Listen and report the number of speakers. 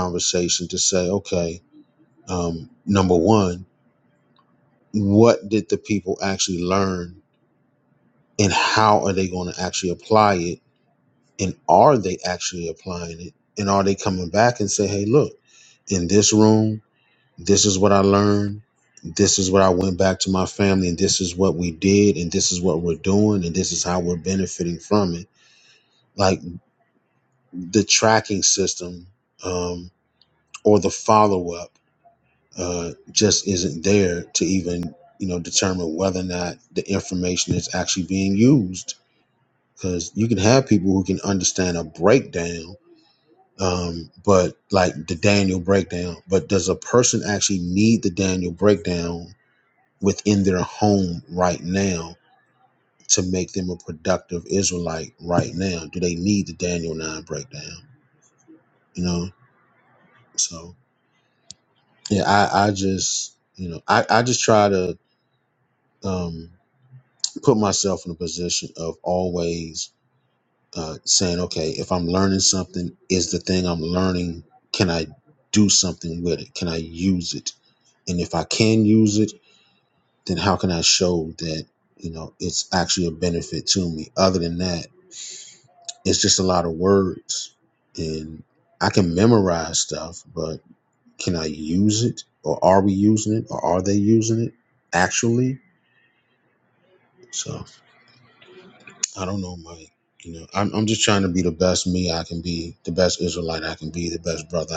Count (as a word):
one